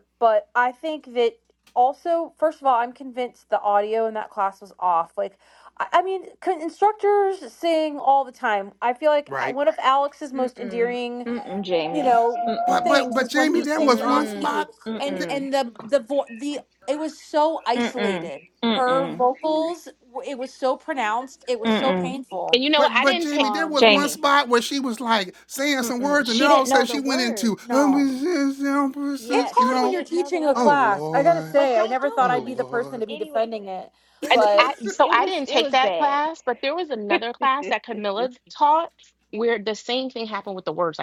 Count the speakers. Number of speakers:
four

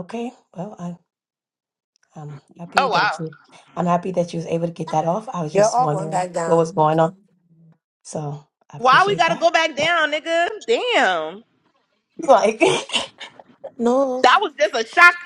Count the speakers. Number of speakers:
three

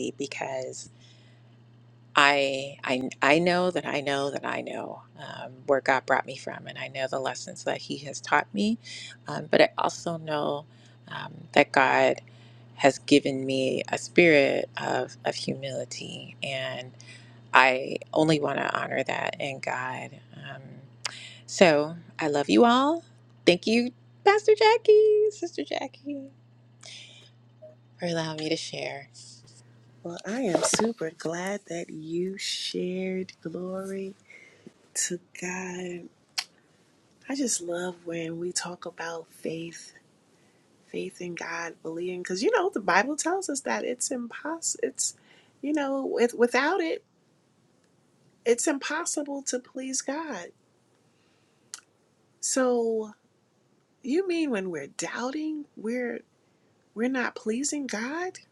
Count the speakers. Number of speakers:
two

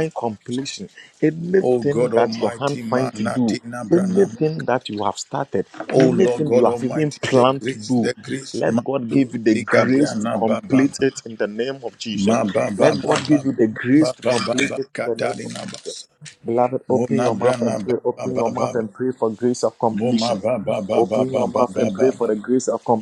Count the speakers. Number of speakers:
two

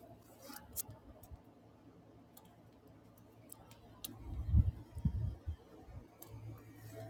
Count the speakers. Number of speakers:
zero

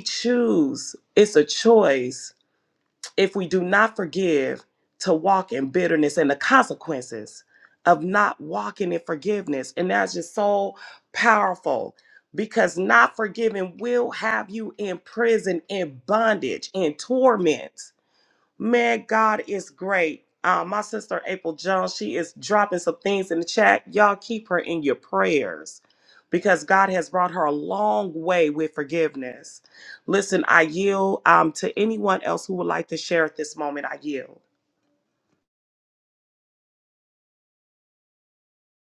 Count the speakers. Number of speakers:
one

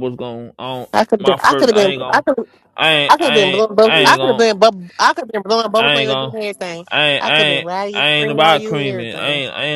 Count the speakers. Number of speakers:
two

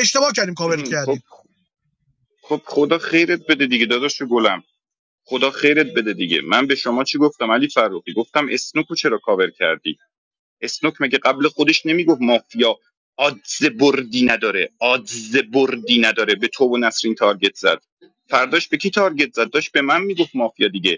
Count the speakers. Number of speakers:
two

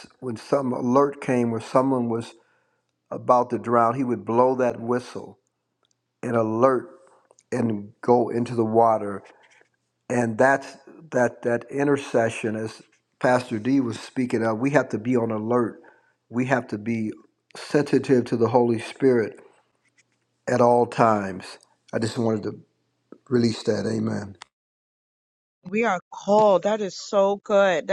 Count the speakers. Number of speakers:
two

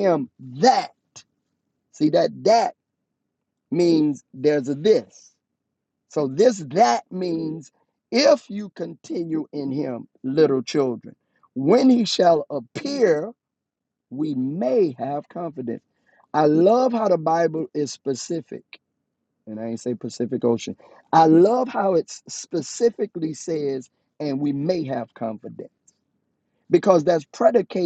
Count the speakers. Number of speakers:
one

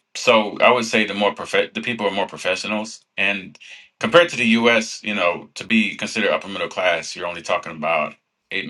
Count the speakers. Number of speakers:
one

